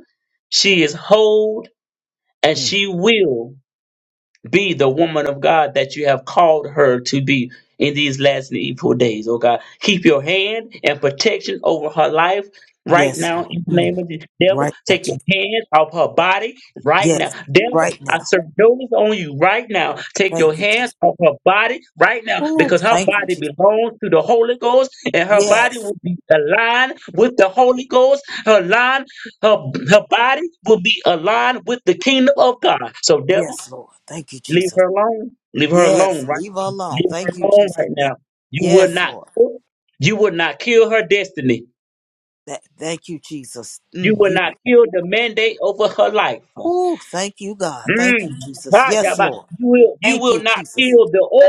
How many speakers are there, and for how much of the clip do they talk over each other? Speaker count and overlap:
two, about 19%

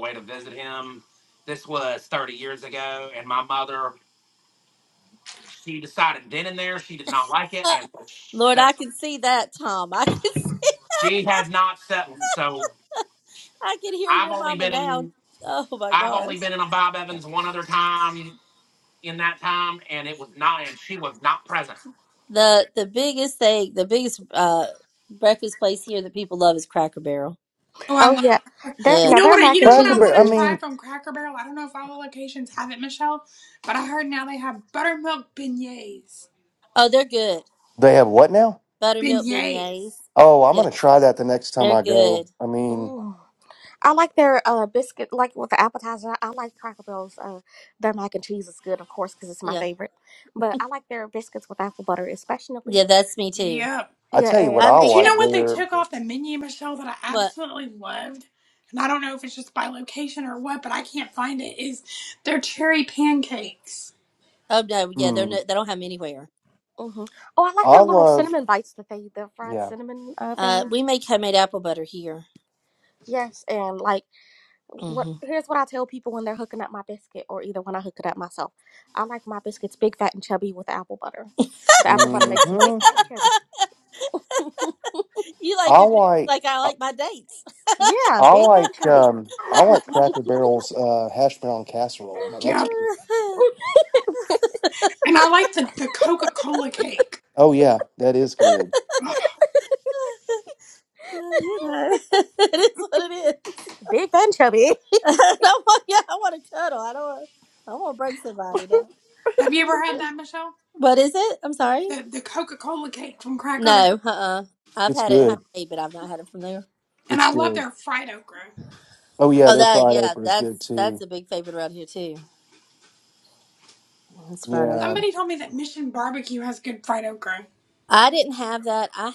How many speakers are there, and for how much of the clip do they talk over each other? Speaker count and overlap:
five, about 12%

